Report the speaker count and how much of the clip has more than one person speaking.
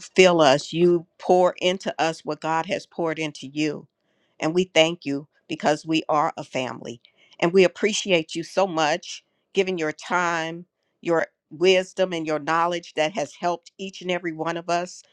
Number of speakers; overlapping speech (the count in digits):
1, no overlap